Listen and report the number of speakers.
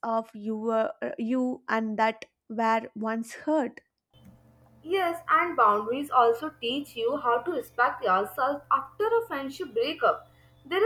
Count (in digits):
2